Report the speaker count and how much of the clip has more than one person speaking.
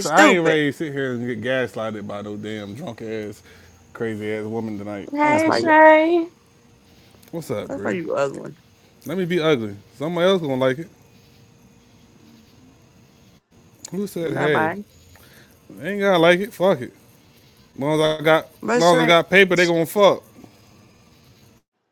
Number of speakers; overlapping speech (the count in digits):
3, about 11%